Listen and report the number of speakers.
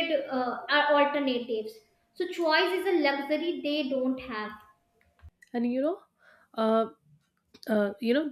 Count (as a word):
two